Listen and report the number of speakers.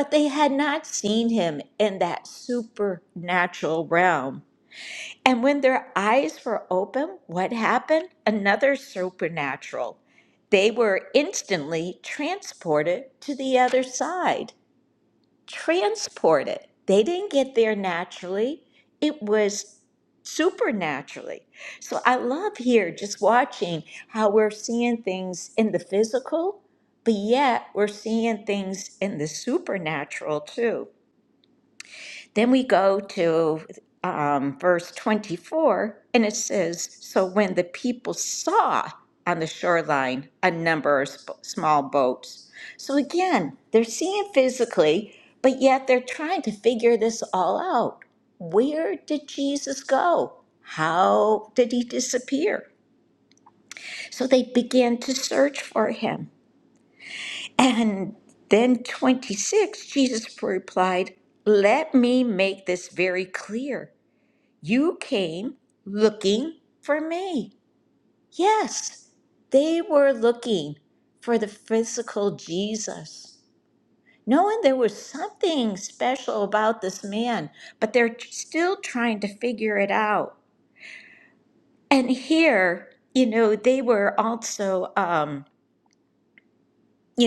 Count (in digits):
1